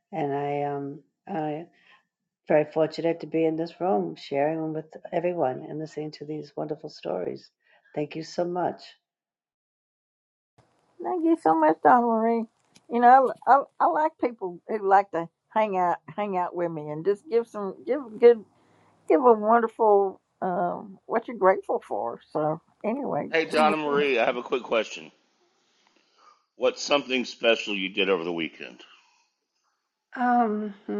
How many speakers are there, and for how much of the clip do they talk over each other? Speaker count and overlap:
3, no overlap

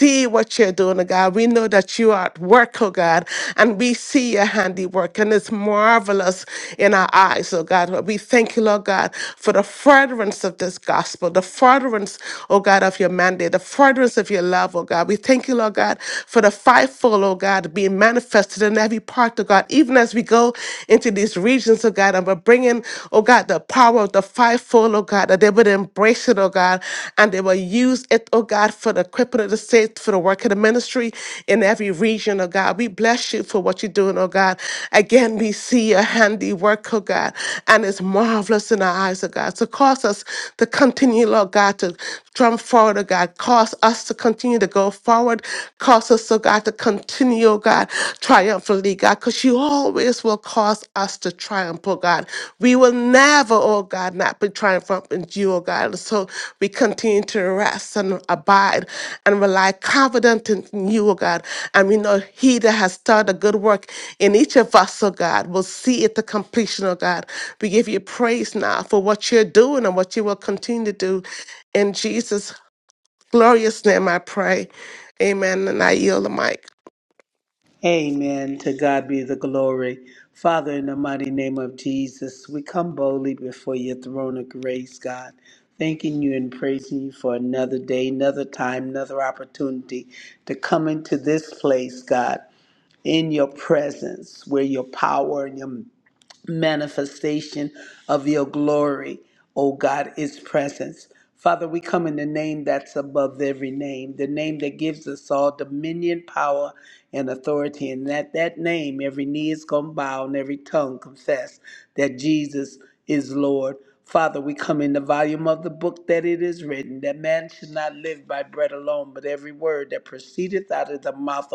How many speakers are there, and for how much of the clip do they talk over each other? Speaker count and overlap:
2, no overlap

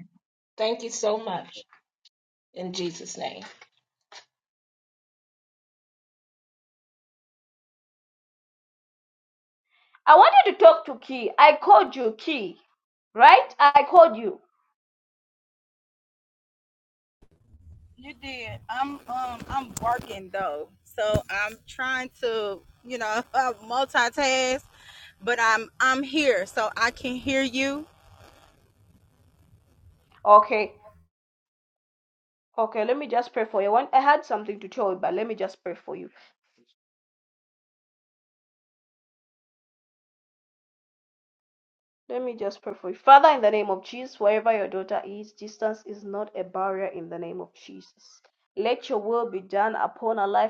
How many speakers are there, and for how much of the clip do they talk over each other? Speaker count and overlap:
3, no overlap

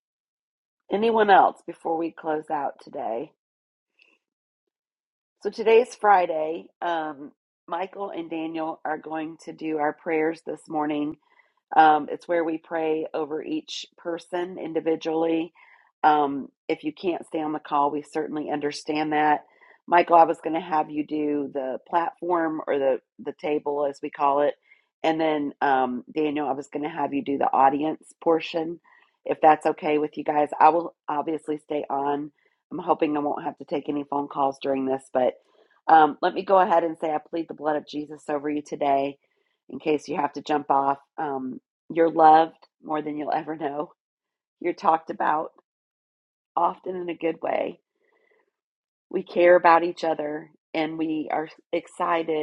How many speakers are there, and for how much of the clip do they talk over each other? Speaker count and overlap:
1, no overlap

